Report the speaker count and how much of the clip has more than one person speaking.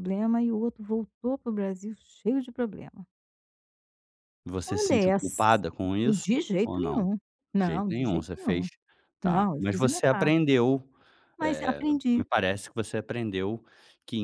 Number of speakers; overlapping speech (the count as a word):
two, about 29%